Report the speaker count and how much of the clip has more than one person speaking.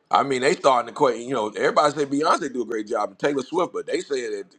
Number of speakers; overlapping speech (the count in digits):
1, no overlap